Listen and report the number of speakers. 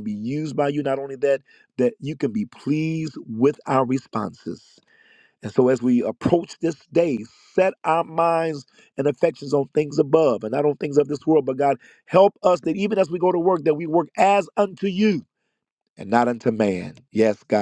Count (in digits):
1